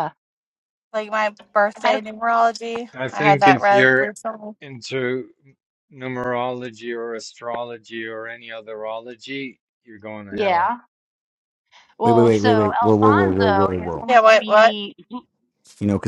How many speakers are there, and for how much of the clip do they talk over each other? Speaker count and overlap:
four, about 27%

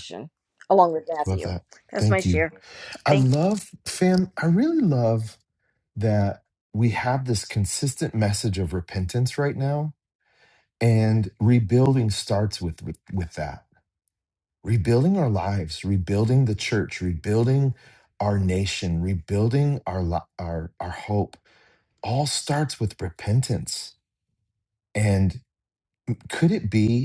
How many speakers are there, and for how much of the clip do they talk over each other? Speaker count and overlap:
two, about 3%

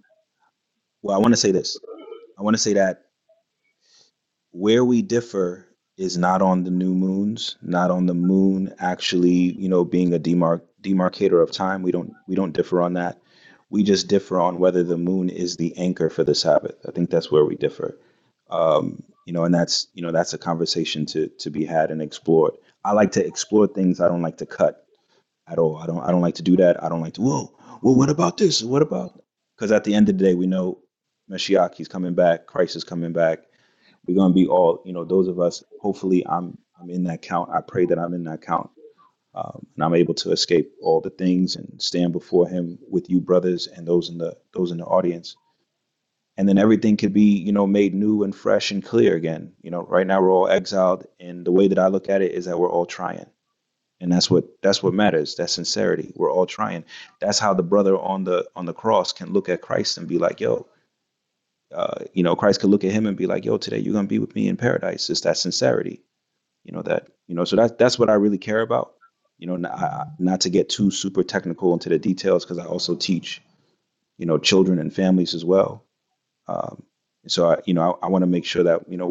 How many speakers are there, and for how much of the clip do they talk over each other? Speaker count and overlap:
one, no overlap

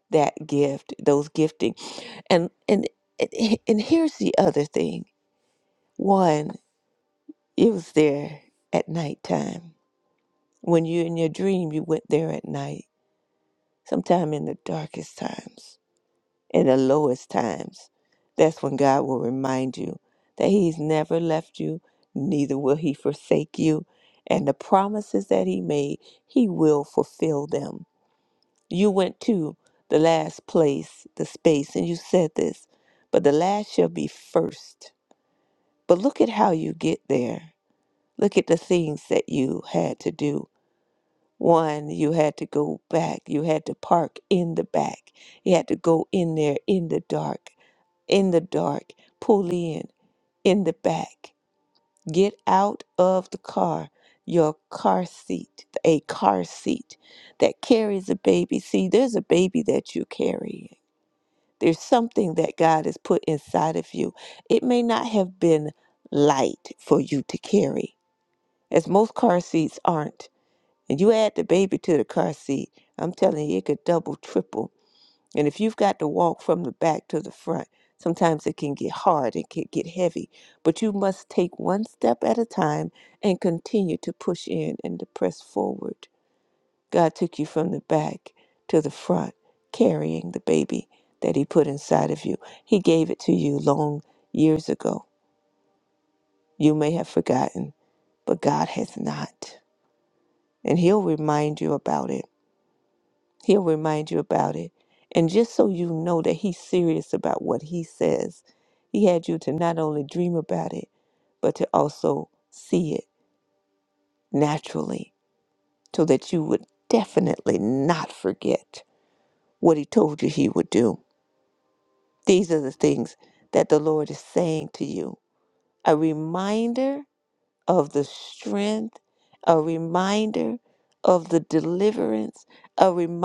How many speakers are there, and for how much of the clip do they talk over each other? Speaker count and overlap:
one, no overlap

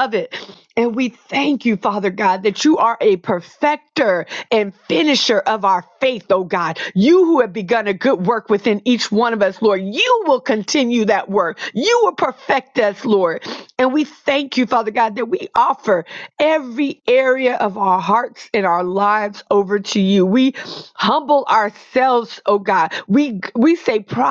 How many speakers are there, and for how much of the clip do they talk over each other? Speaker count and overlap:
one, no overlap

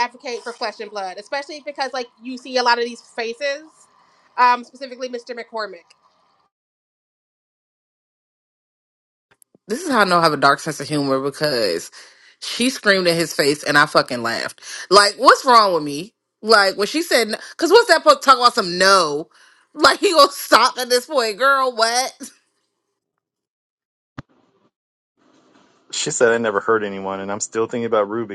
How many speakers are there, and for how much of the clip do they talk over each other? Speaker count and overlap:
three, no overlap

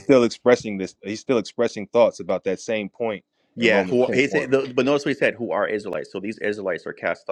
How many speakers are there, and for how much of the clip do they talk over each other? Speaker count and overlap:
two, about 13%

